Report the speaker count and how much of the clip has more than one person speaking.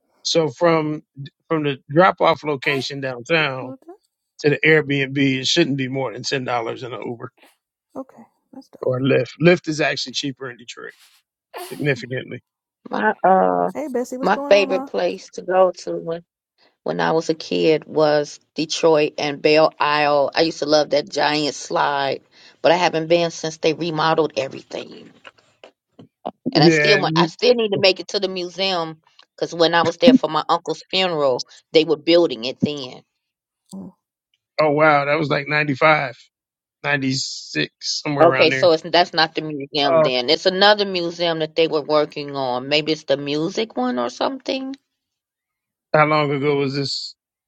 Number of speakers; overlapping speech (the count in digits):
3, about 6%